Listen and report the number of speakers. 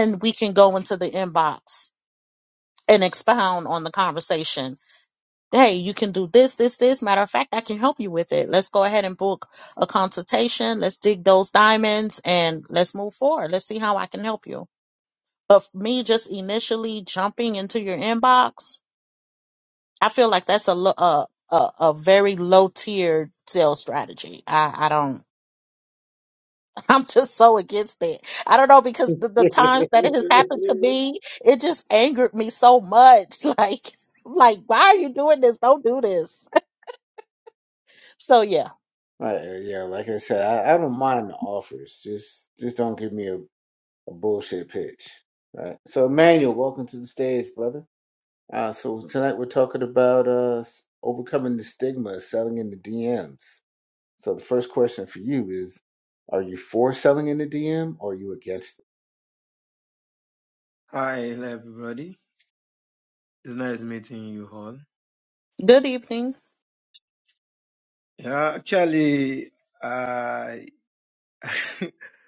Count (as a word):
three